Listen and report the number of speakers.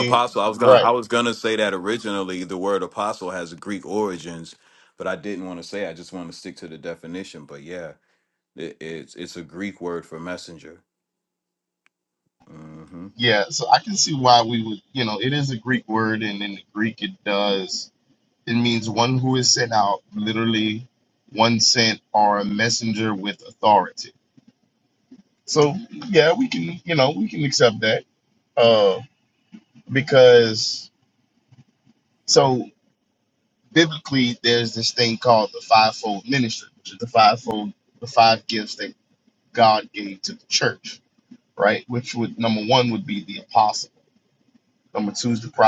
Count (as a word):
two